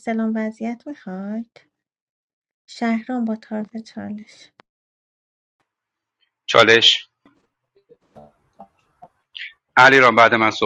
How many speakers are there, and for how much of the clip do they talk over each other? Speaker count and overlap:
2, no overlap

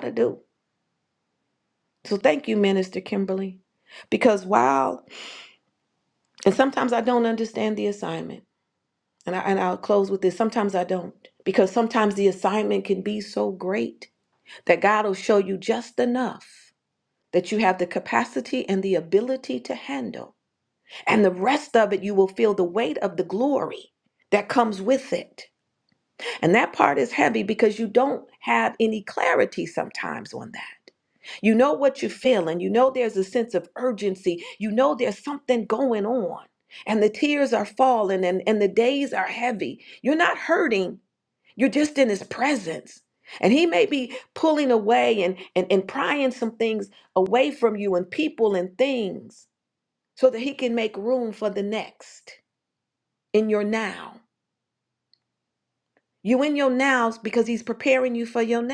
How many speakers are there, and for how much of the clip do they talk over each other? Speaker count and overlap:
1, no overlap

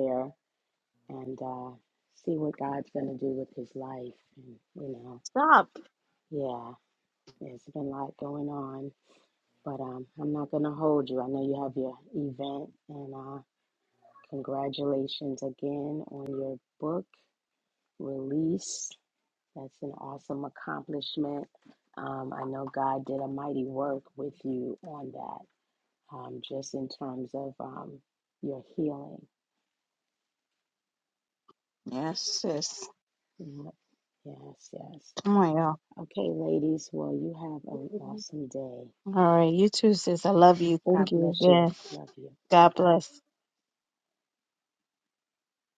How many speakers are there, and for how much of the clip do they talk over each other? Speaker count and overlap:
2, about 2%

